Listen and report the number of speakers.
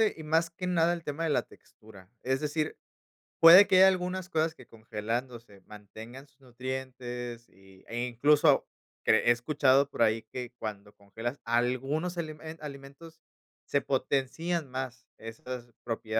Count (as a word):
one